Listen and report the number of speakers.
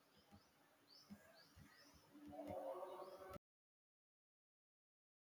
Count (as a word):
zero